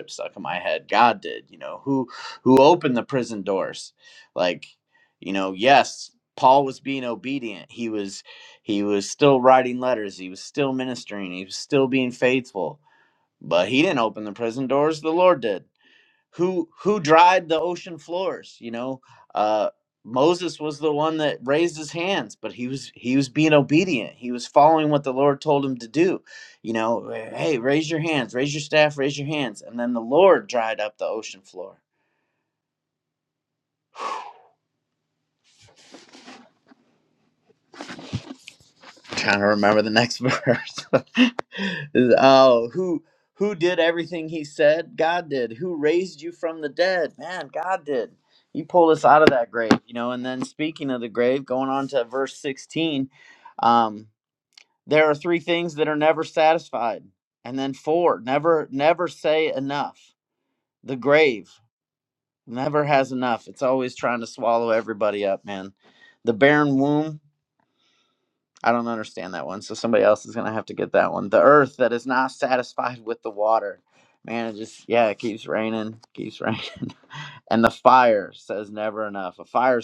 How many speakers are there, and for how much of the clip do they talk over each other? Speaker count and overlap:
1, no overlap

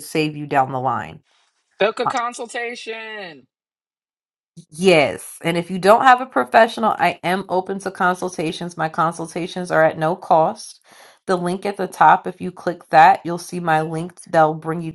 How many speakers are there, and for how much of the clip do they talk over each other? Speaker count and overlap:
2, about 1%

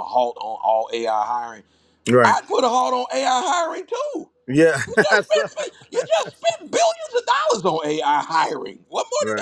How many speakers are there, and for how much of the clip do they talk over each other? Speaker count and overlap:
2, about 10%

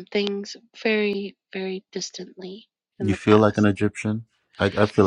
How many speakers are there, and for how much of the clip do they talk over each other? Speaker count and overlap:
2, about 9%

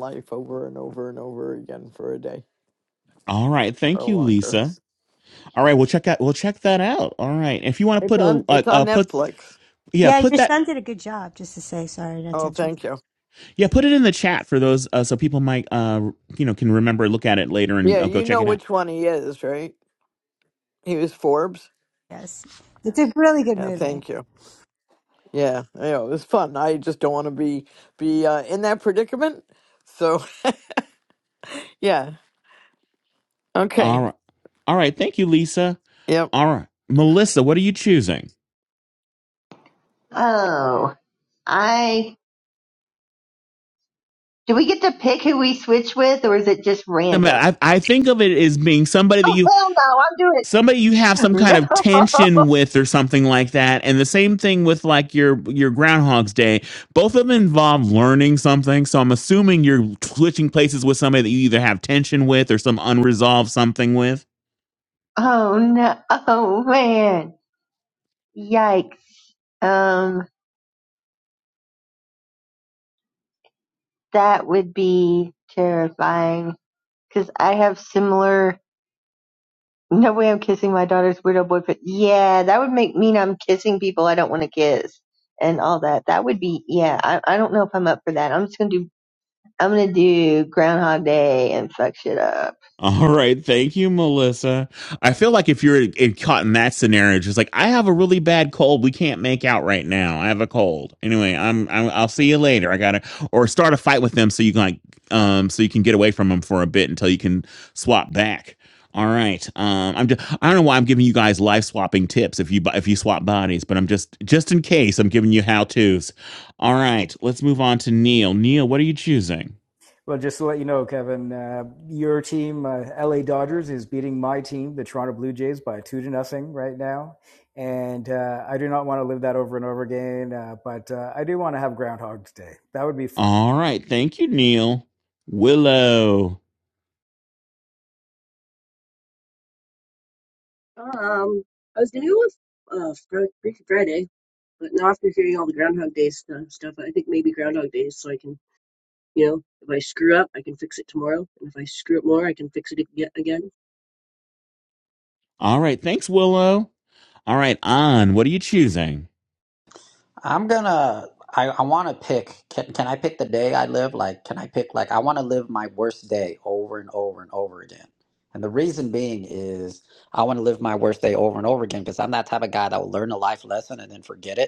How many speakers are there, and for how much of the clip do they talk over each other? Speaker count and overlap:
7, about 3%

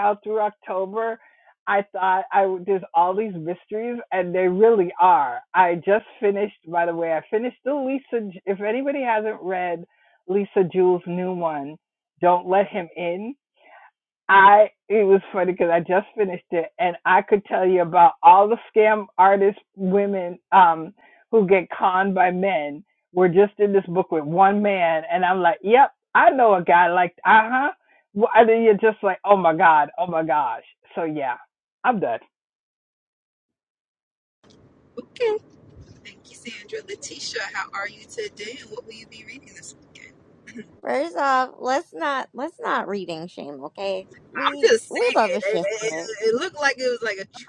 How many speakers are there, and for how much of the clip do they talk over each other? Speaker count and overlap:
3, about 4%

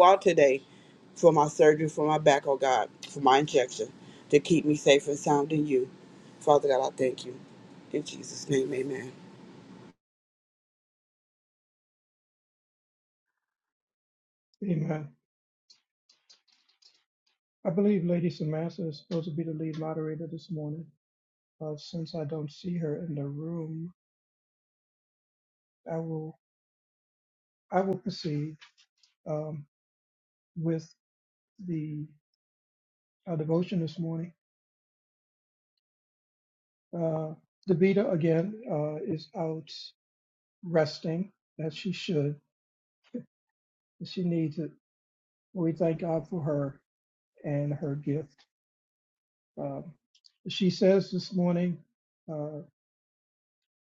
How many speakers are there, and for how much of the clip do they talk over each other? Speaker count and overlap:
2, no overlap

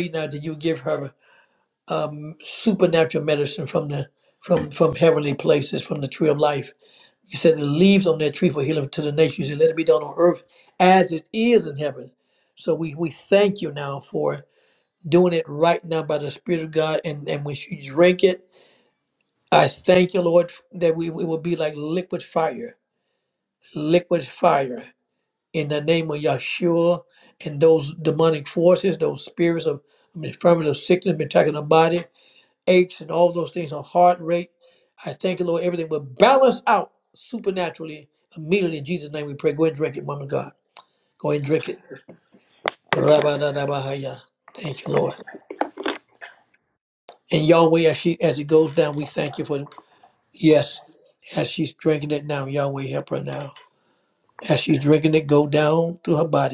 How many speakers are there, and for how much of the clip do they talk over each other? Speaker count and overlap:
1, no overlap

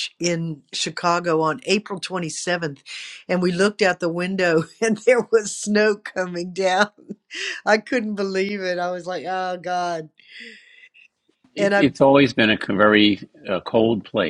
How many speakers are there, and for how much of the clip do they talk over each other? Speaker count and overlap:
2, about 2%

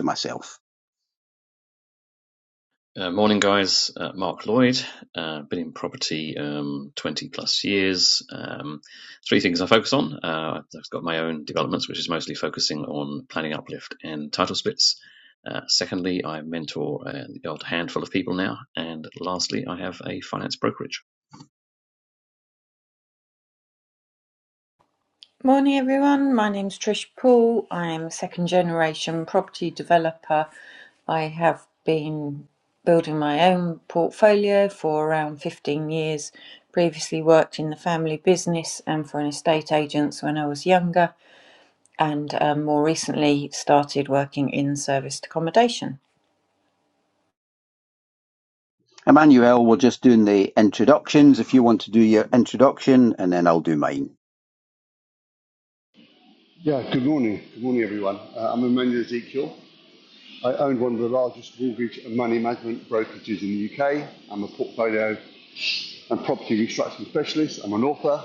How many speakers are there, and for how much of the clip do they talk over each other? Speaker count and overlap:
4, no overlap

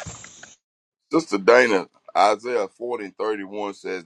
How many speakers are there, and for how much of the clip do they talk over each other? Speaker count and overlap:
1, no overlap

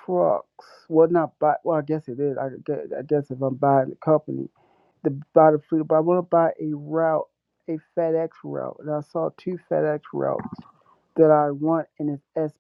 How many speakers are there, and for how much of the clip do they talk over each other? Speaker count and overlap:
1, no overlap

